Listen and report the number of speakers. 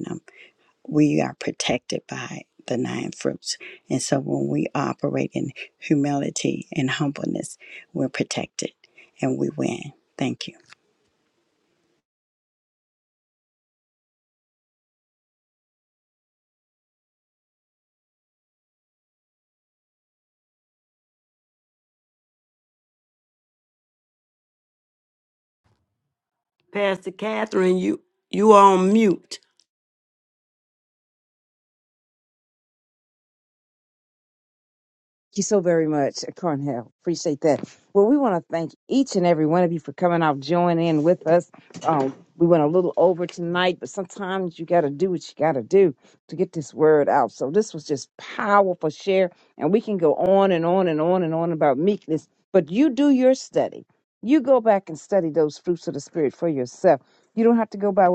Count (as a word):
three